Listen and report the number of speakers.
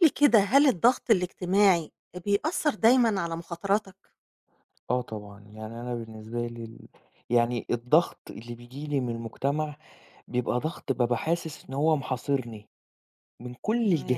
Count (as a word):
two